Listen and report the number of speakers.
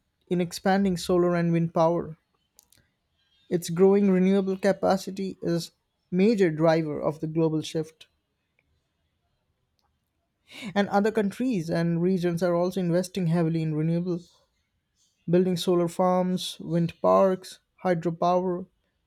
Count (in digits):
1